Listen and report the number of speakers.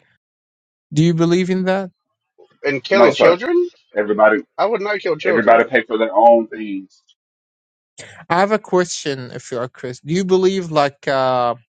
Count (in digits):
3